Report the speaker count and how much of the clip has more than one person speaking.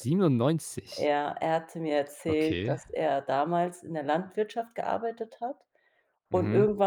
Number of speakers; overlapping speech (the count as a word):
two, about 14%